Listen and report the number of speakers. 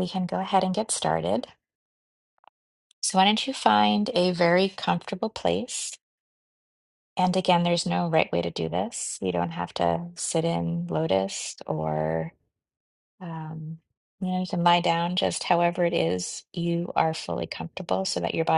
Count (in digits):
1